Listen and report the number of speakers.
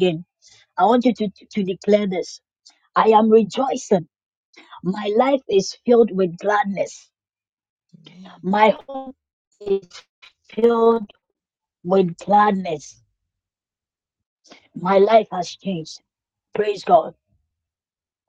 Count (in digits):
1